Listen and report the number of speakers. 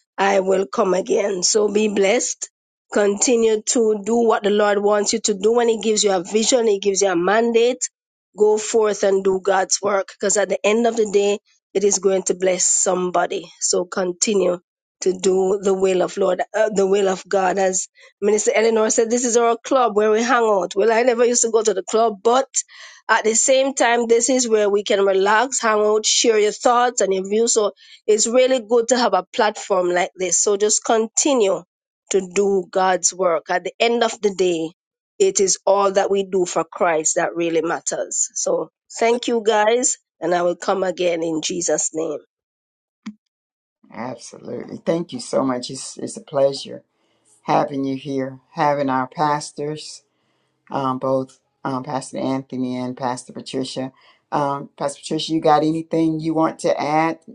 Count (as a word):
two